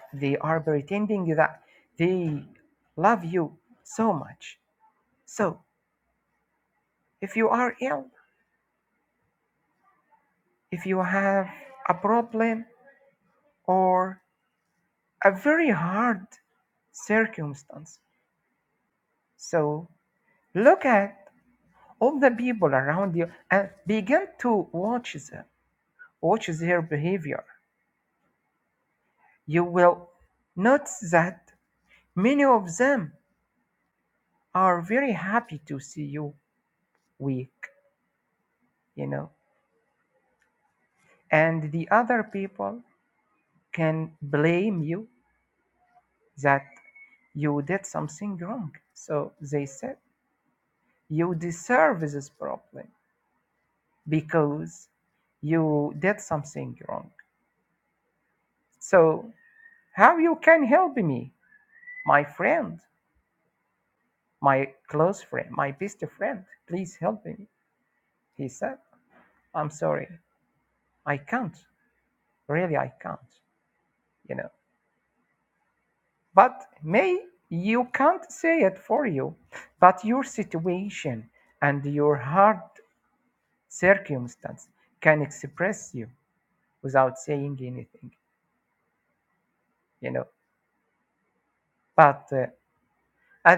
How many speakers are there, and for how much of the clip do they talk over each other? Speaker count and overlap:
1, no overlap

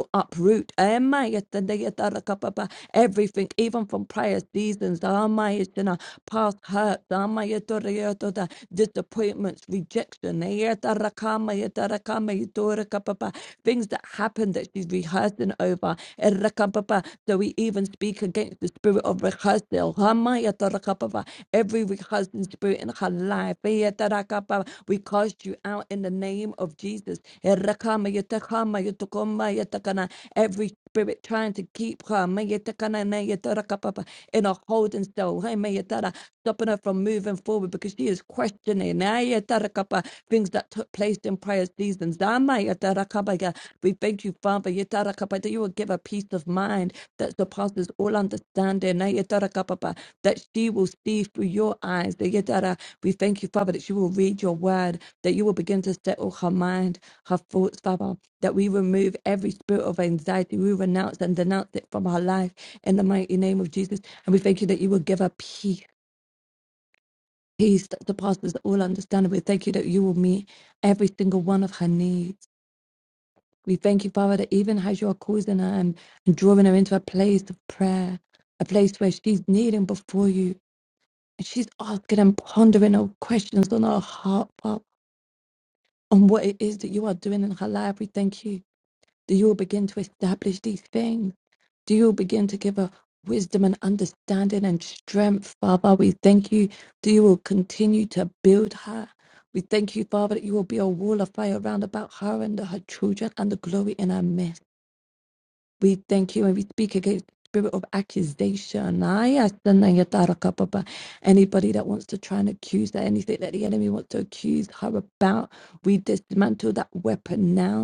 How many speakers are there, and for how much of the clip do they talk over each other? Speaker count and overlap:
1, no overlap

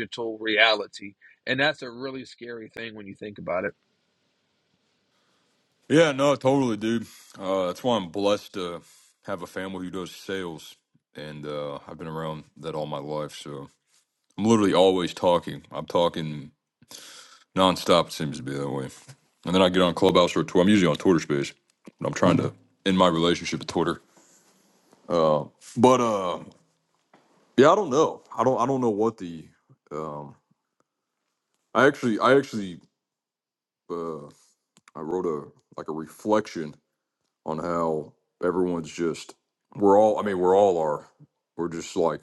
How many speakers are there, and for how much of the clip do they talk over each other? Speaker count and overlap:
2, no overlap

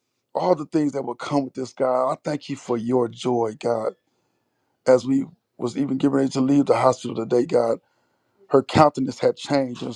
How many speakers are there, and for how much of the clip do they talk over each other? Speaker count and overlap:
1, no overlap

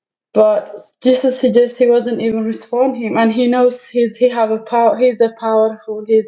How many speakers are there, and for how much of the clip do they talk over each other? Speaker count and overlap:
1, no overlap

